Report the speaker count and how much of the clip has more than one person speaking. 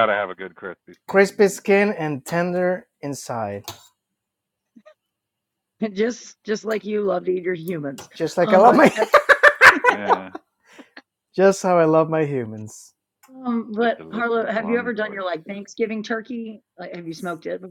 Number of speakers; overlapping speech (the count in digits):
3, about 15%